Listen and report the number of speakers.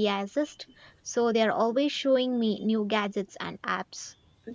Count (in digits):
1